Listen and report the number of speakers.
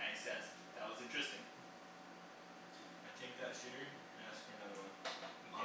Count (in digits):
2